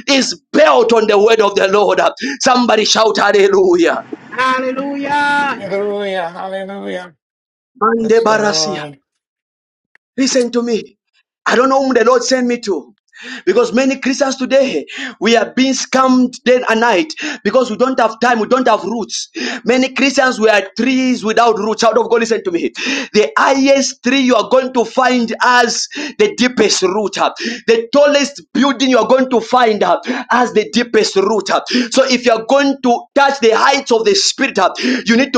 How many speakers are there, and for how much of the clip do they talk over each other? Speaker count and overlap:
3, about 2%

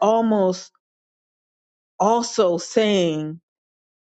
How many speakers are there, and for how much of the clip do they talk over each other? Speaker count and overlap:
1, no overlap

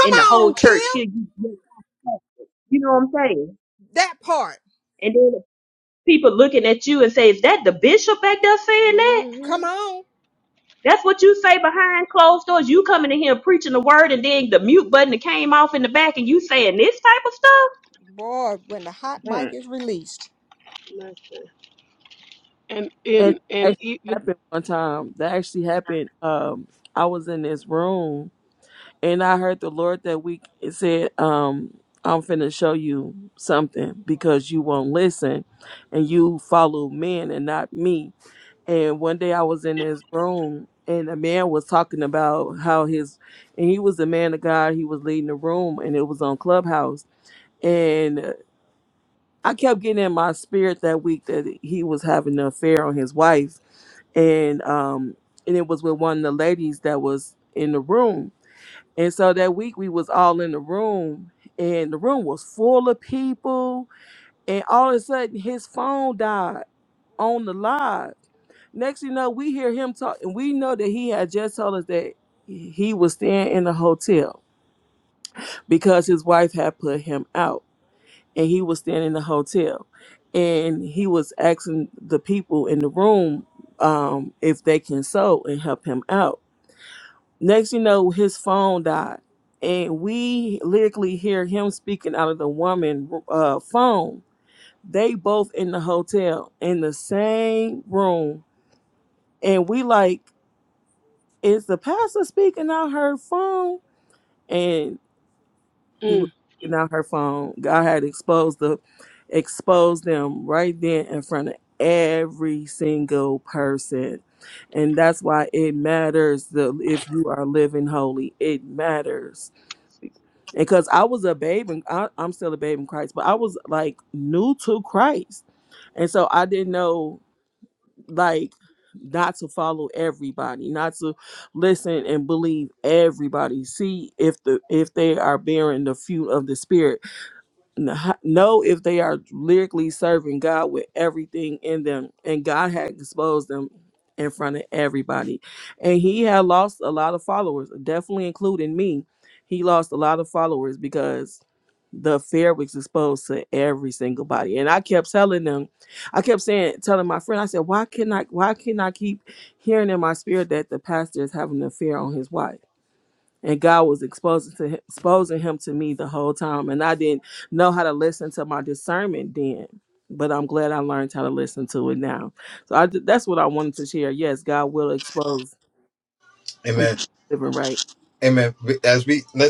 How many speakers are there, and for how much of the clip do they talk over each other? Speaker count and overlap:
5, about 1%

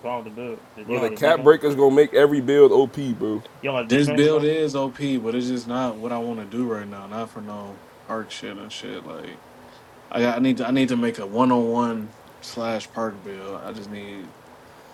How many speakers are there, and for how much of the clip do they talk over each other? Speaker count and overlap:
3, about 8%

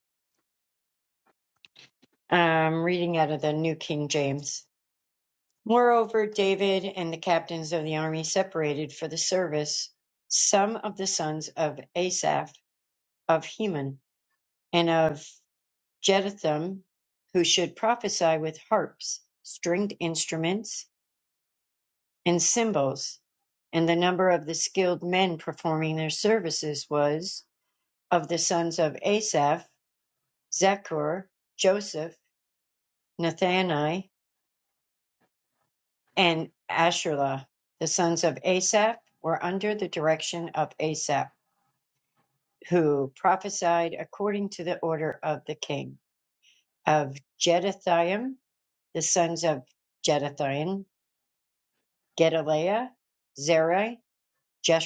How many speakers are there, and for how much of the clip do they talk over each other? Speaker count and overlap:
1, no overlap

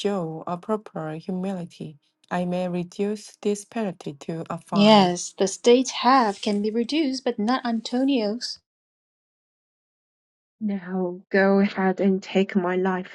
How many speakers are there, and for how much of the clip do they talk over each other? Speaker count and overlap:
3, about 3%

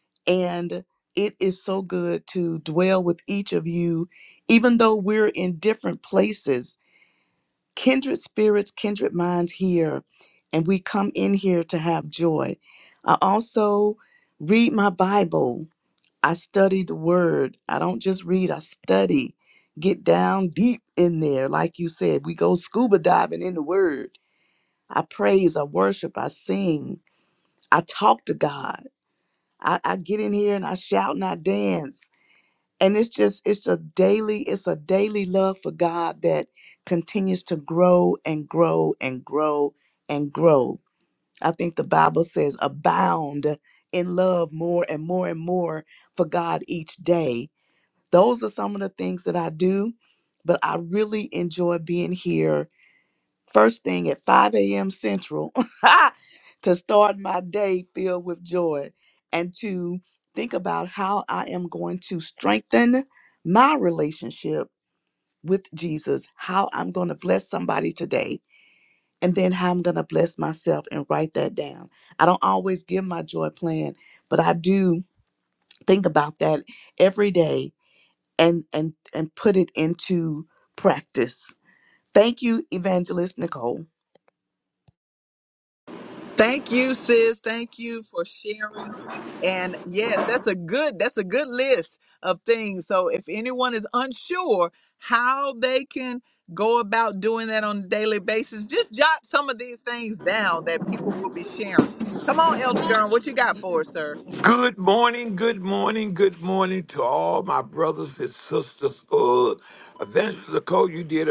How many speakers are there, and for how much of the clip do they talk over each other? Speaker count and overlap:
3, no overlap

